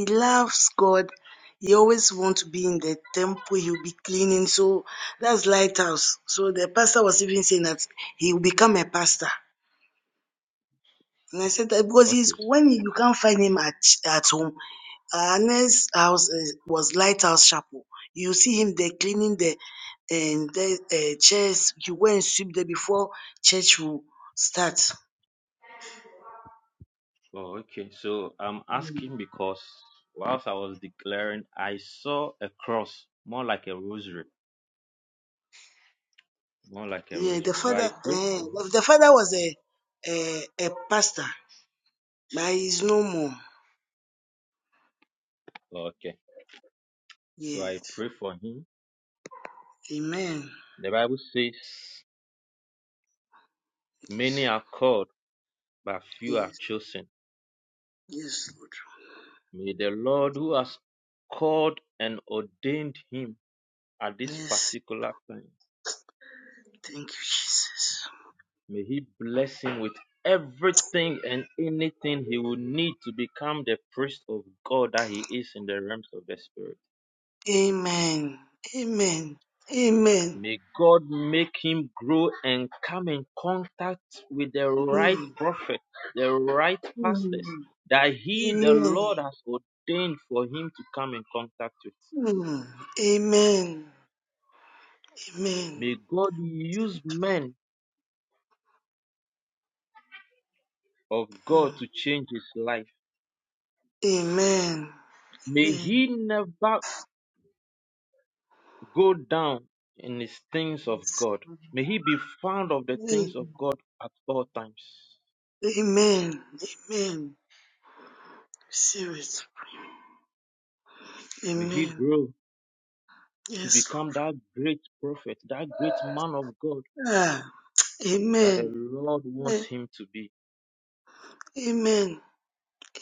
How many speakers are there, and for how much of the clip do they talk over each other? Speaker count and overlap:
2, about 5%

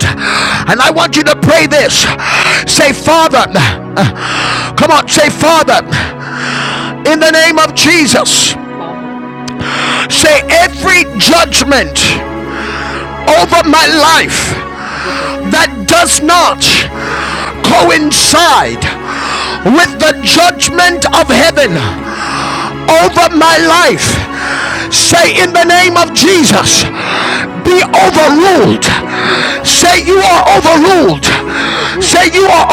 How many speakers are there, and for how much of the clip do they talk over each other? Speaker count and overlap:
2, about 10%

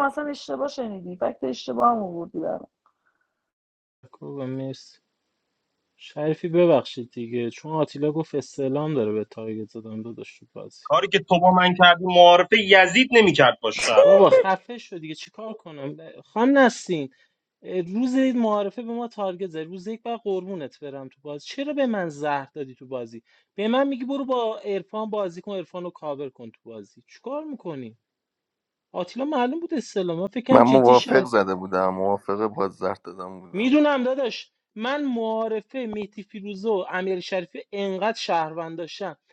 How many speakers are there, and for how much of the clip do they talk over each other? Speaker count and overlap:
4, about 3%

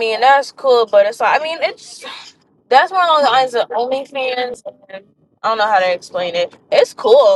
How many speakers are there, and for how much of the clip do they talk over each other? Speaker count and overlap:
1, no overlap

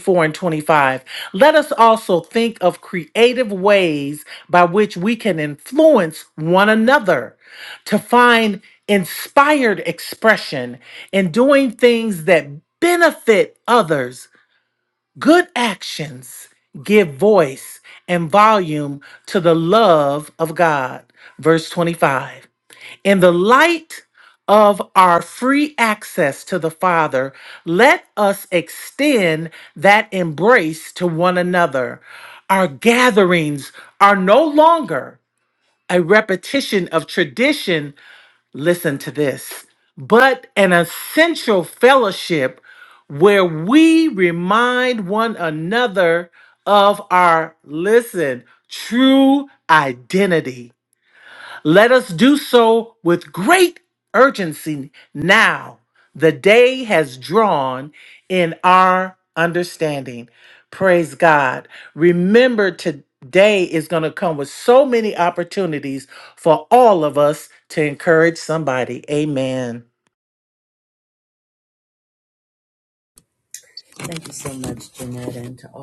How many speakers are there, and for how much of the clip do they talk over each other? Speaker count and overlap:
2, no overlap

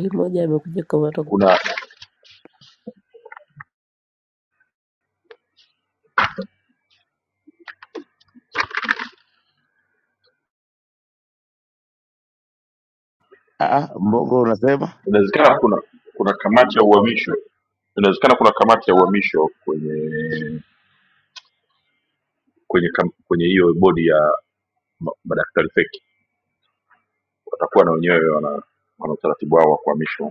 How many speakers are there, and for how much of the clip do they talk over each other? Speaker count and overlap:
3, under 1%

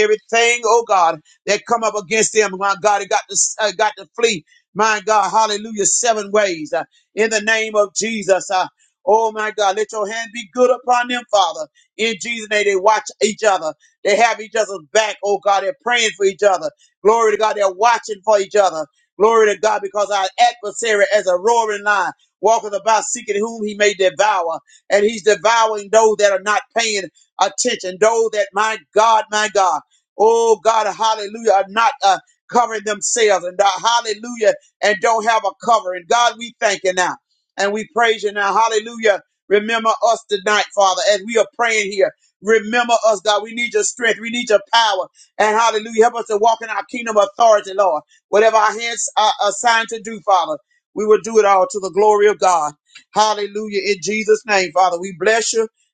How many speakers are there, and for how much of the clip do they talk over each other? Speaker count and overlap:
1, no overlap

